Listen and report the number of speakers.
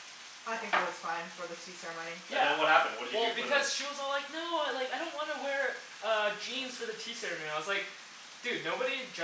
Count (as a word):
three